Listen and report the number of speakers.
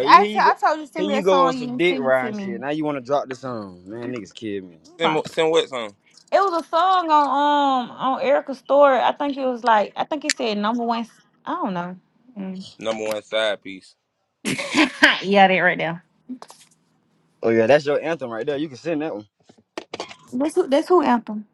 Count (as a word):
three